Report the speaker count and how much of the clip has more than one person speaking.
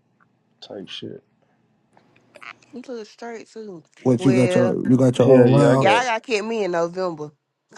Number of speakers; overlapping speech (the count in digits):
3, about 19%